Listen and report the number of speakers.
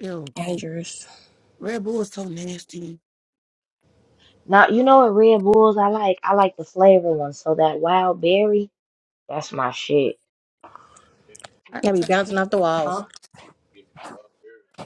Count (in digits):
3